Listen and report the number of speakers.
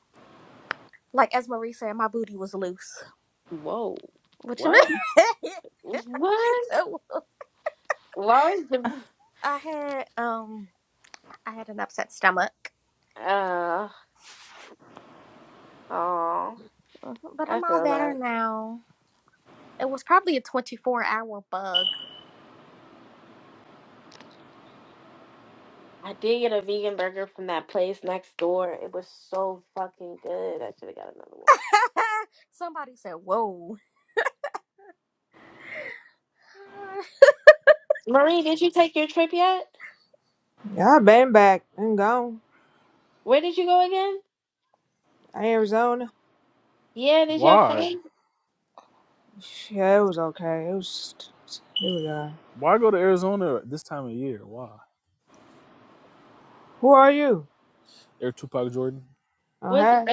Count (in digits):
4